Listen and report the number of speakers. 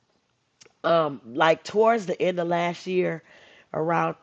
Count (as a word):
one